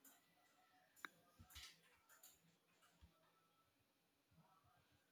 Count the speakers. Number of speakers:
0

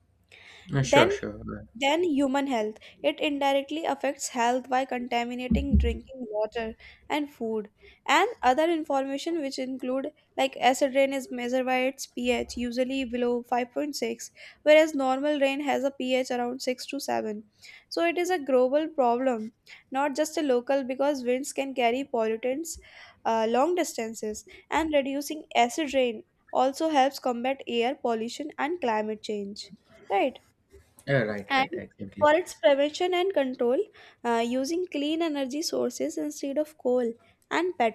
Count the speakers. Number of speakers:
2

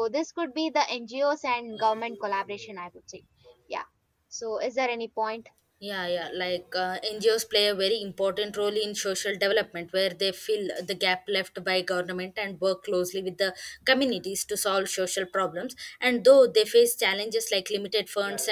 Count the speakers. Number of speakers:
2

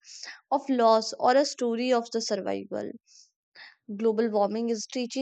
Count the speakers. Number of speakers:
1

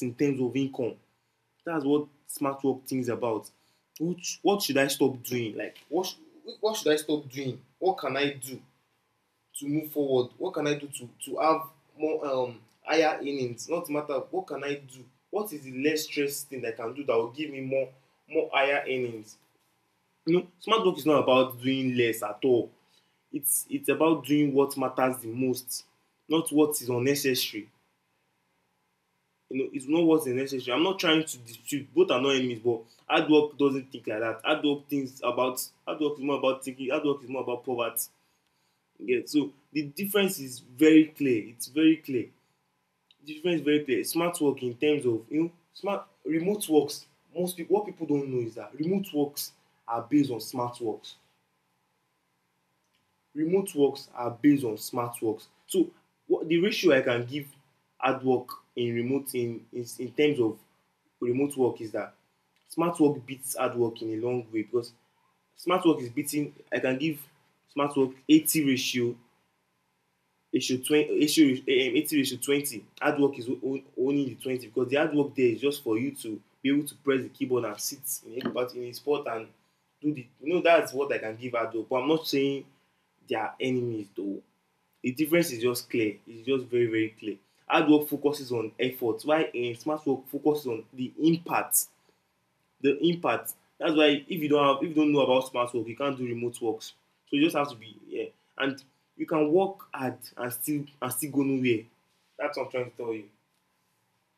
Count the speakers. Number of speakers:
1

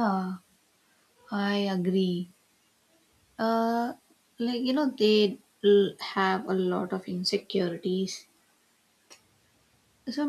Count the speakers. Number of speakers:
1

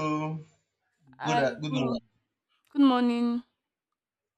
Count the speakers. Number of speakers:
2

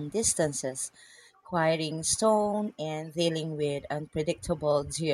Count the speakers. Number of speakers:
1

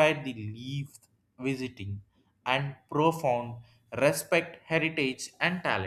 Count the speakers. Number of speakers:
1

